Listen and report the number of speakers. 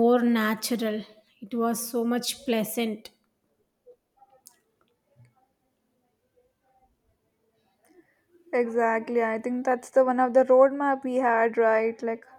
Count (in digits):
2